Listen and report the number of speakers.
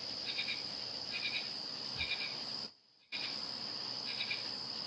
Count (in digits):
0